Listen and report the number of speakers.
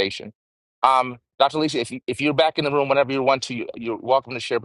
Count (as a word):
one